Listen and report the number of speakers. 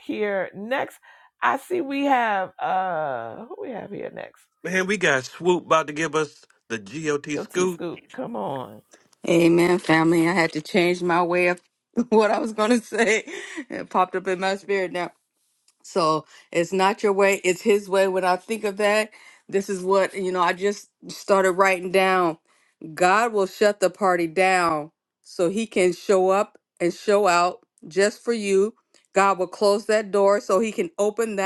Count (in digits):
3